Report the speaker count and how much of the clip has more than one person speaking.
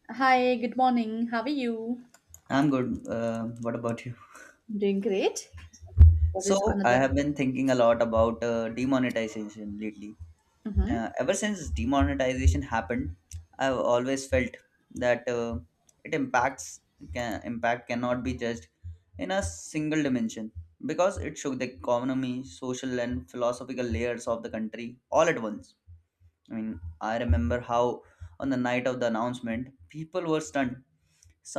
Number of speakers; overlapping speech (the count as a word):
two, about 2%